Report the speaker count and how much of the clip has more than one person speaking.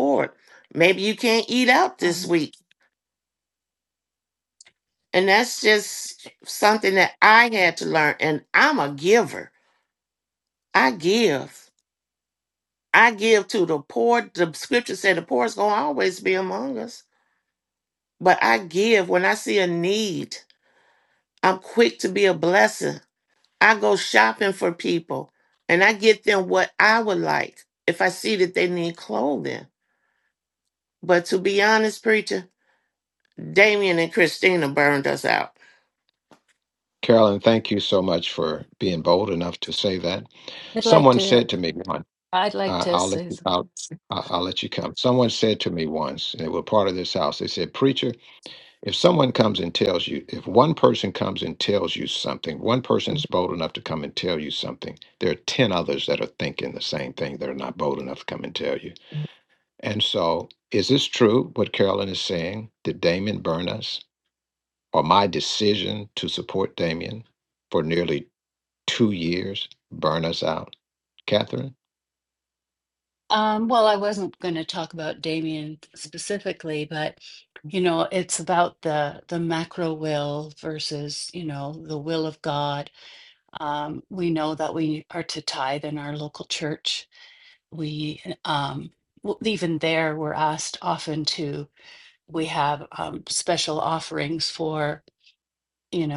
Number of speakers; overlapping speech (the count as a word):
three, about 2%